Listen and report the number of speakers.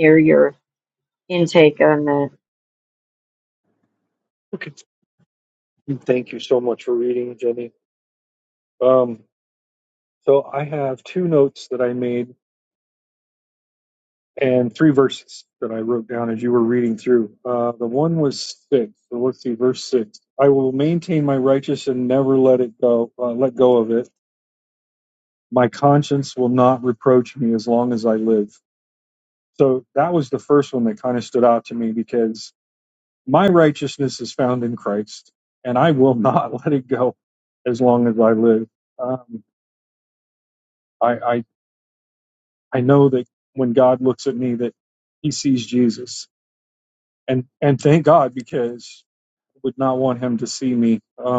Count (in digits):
2